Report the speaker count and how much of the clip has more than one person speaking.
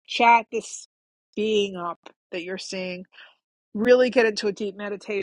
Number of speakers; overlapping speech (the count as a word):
one, no overlap